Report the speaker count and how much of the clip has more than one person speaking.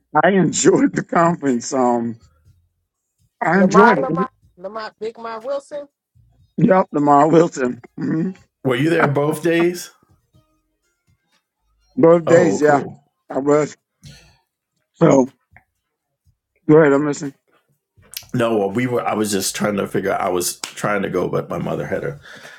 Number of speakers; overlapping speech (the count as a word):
three, about 6%